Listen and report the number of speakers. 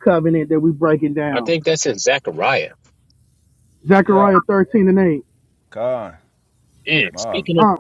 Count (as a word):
three